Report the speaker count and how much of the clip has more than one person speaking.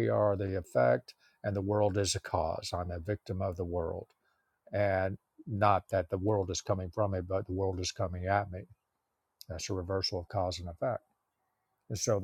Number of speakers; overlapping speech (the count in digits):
1, no overlap